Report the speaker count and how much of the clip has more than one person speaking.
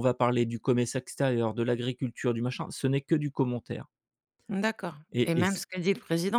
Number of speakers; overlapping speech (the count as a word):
two, about 6%